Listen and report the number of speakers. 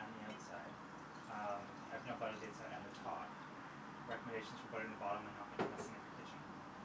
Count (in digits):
1